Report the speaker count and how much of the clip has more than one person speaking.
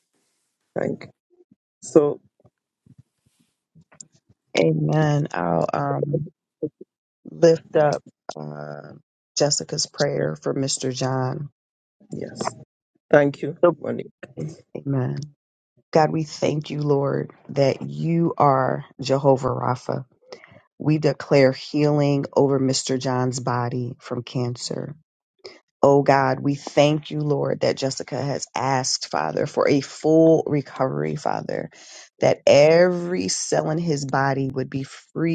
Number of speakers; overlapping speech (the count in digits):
2, under 1%